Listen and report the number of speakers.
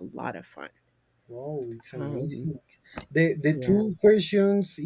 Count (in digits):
2